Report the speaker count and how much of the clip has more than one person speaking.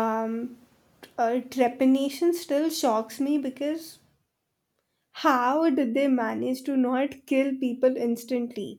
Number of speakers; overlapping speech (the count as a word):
one, no overlap